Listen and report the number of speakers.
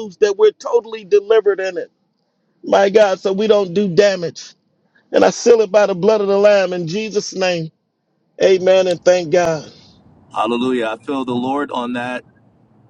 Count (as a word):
two